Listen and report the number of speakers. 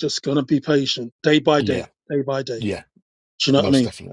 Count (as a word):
two